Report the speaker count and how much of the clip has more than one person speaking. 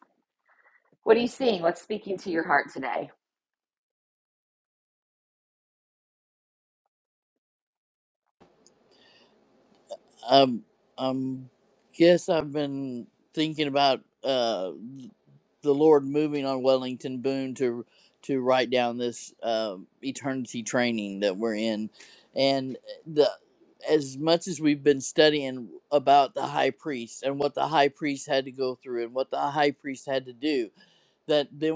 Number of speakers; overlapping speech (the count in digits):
2, no overlap